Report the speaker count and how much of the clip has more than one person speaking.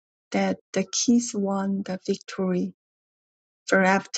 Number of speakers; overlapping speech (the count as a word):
one, no overlap